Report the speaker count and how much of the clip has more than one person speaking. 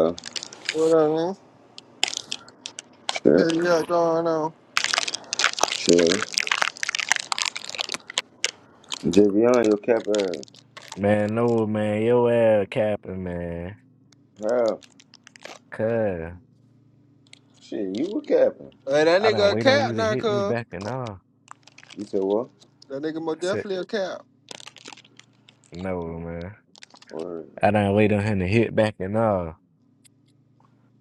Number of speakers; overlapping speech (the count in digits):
3, about 6%